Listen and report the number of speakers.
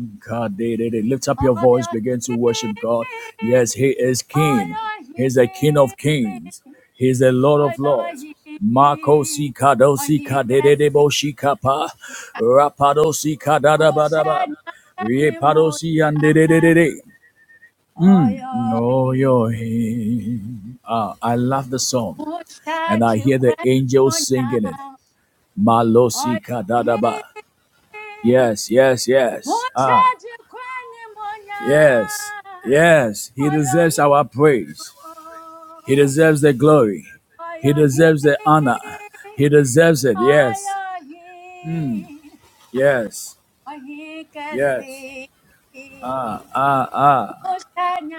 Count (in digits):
2